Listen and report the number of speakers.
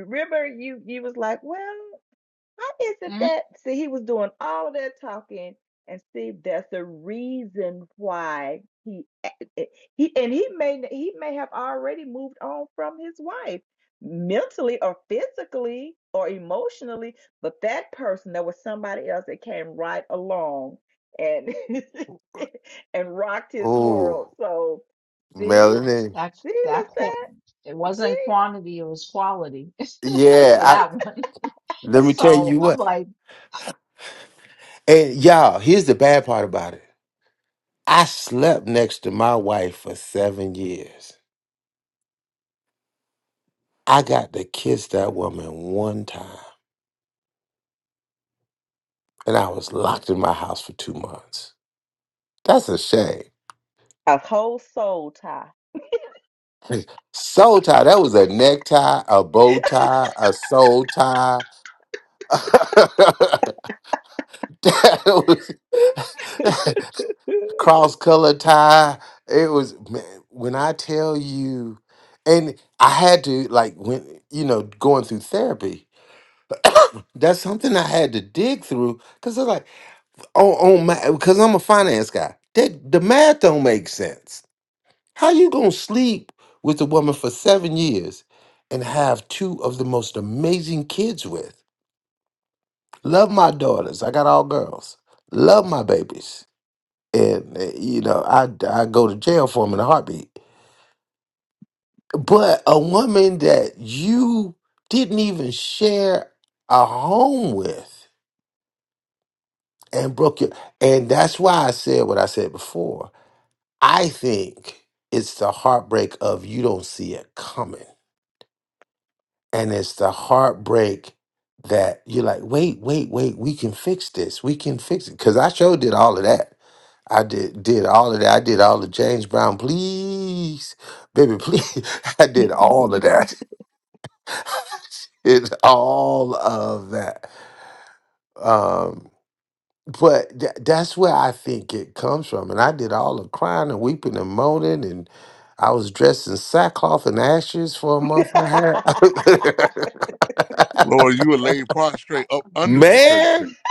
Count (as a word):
four